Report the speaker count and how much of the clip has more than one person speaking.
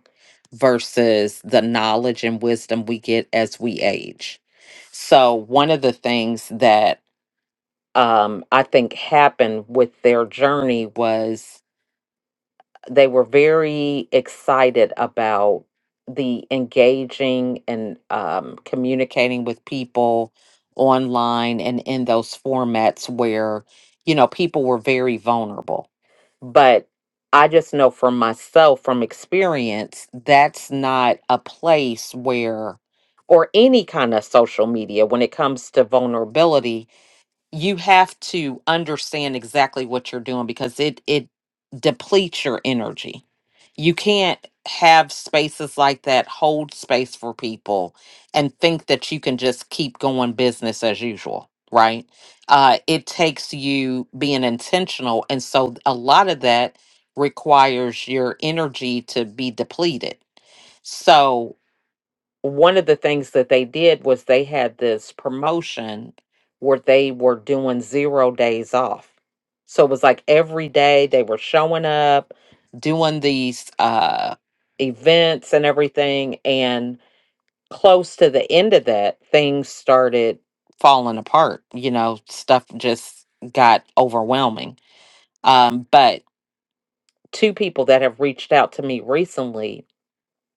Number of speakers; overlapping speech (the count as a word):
one, no overlap